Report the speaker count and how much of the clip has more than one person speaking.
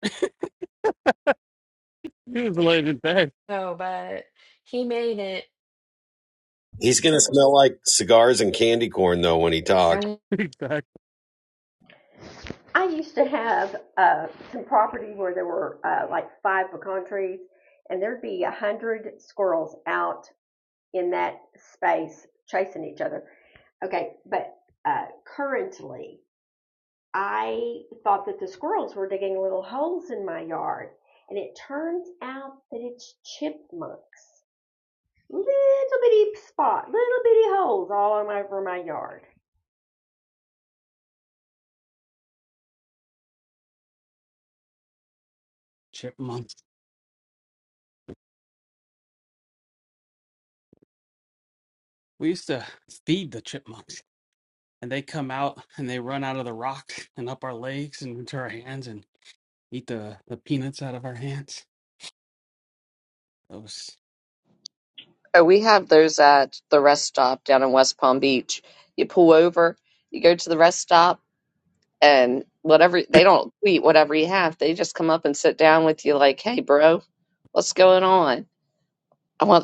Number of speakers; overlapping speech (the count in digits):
5, no overlap